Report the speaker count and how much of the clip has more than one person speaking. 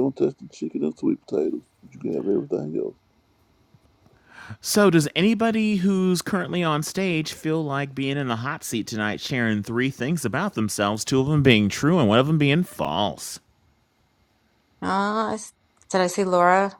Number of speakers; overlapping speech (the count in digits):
3, no overlap